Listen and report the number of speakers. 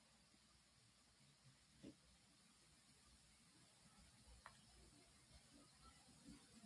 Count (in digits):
0